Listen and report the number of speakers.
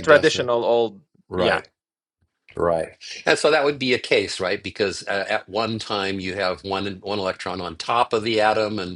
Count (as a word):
two